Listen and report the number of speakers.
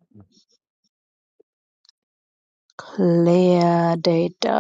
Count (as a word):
one